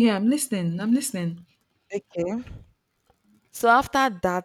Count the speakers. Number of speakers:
two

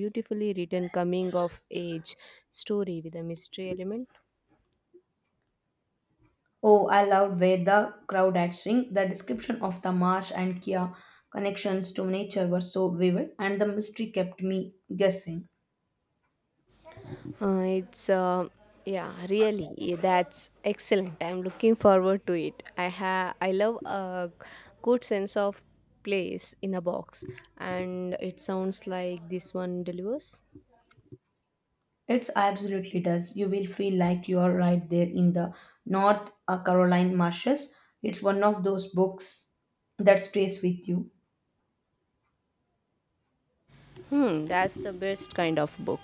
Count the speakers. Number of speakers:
two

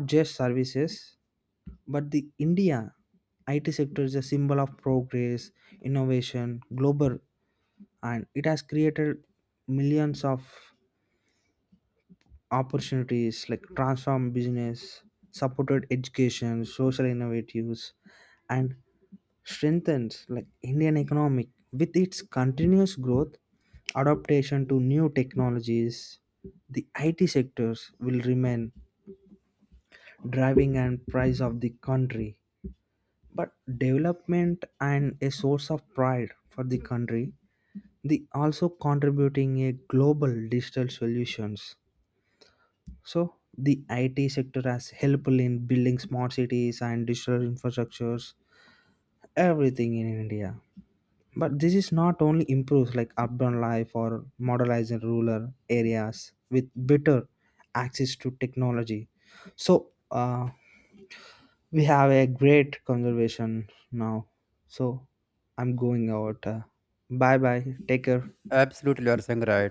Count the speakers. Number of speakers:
two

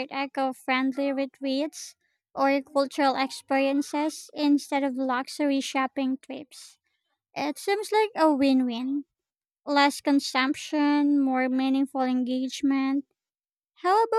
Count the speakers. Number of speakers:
one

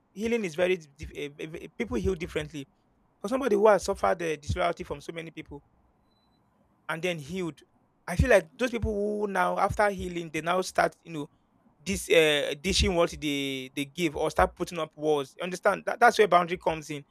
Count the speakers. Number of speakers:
one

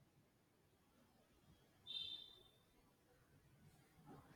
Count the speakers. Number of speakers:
zero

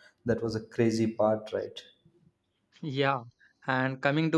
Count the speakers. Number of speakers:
two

